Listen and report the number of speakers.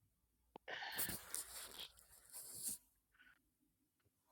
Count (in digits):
0